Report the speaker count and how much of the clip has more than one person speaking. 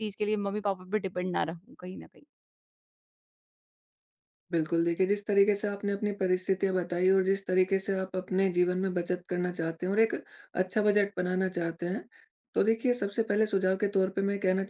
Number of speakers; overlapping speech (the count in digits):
2, no overlap